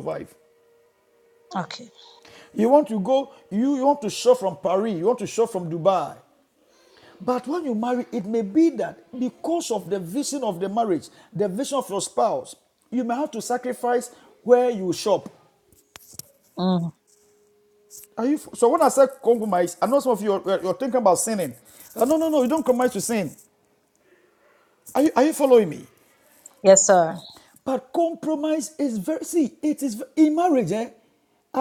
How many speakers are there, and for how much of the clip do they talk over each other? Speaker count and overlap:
2, no overlap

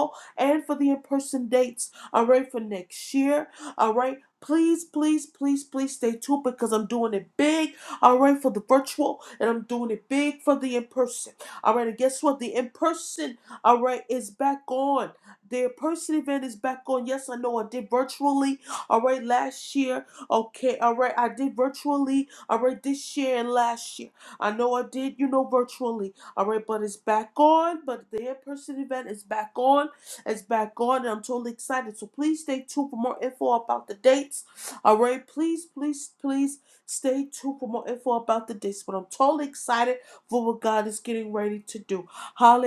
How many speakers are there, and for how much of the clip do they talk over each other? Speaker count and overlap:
1, no overlap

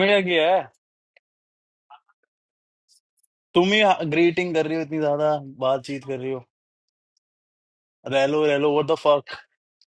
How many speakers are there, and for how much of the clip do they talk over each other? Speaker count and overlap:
1, no overlap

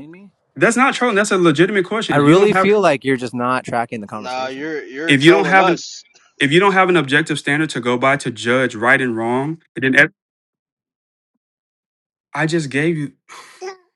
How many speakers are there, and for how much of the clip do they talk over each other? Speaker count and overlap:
3, about 12%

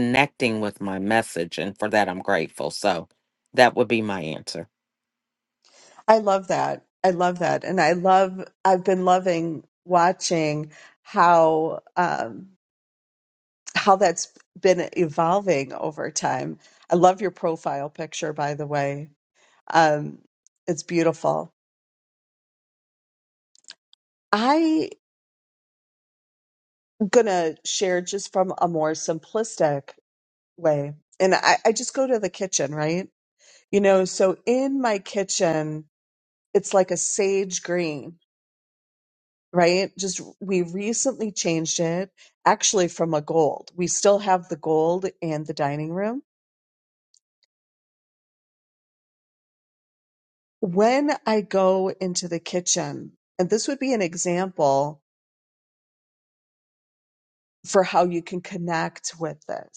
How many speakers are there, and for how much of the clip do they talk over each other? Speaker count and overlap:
2, no overlap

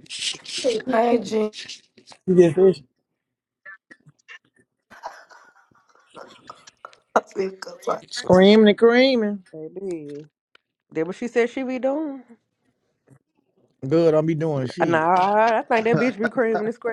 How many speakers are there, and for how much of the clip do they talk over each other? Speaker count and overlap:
3, about 1%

